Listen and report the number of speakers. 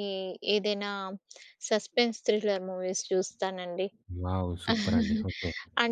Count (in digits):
2